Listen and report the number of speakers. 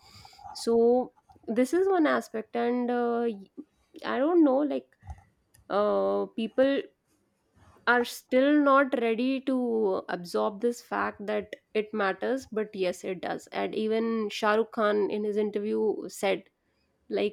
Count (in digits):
1